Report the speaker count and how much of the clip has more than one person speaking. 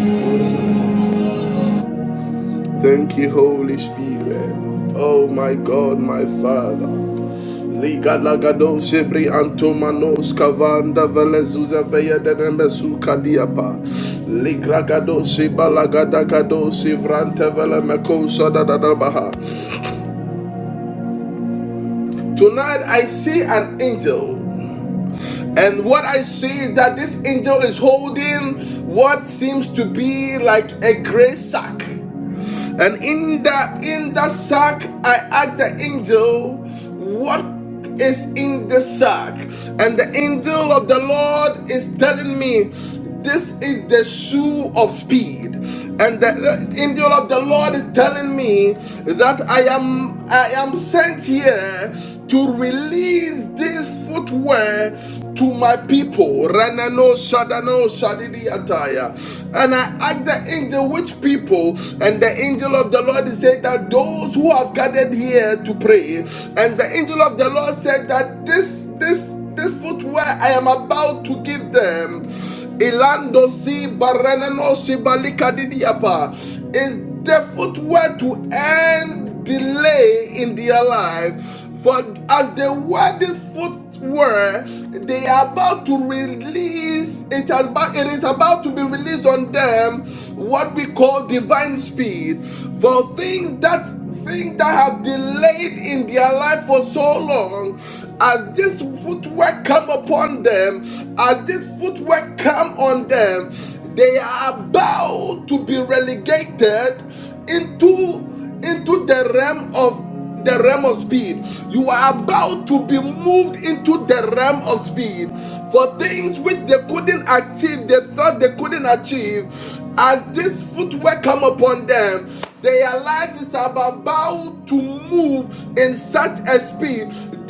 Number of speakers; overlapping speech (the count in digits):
1, no overlap